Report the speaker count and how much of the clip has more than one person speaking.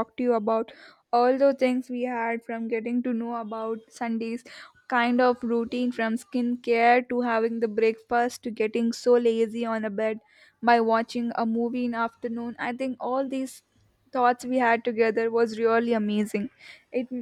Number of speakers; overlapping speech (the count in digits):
1, no overlap